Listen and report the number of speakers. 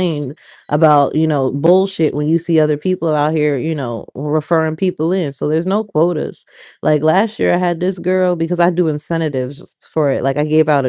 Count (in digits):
1